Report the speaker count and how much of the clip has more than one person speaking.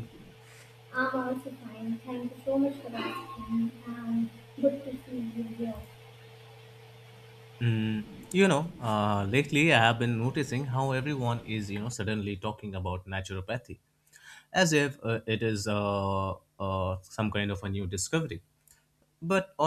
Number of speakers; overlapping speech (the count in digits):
2, no overlap